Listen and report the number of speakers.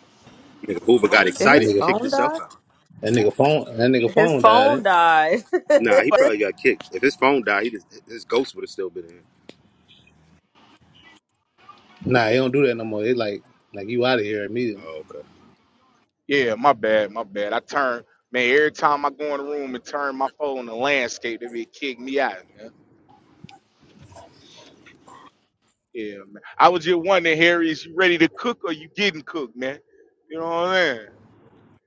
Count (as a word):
four